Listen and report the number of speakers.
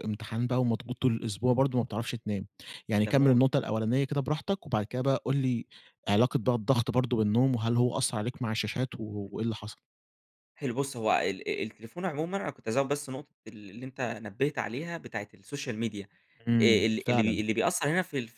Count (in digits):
2